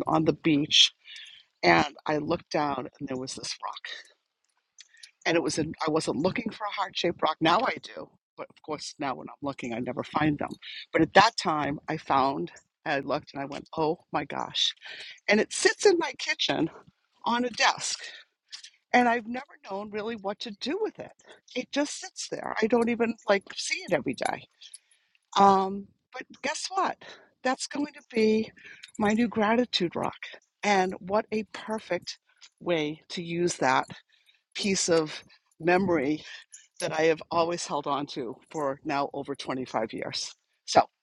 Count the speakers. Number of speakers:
1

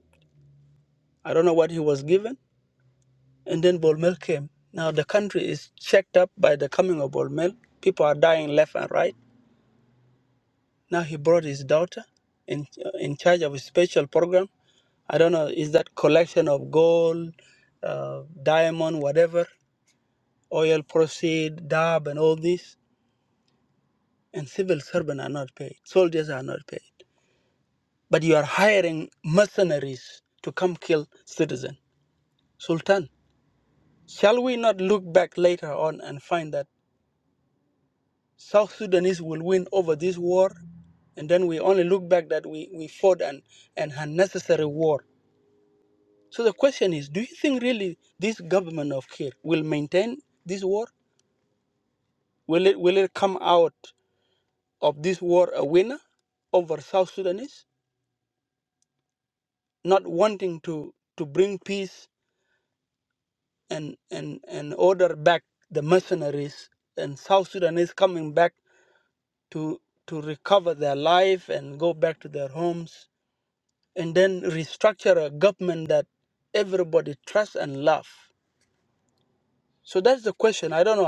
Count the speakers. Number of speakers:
1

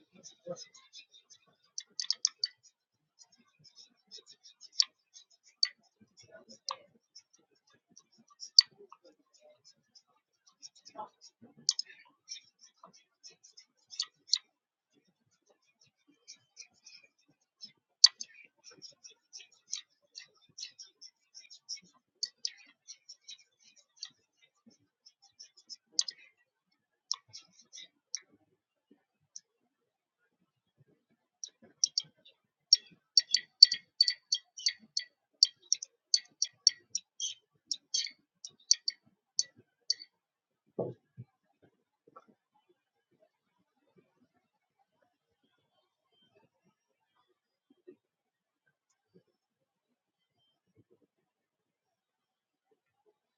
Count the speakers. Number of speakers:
0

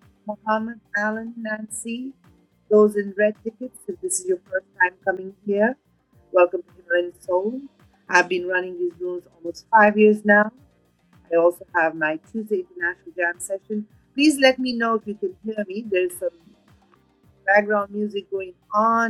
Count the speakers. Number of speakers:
1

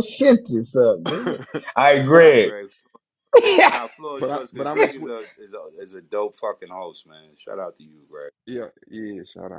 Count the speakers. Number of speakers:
3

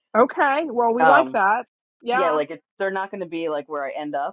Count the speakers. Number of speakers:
2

